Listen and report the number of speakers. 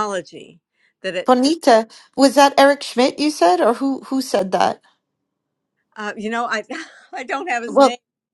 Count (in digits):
2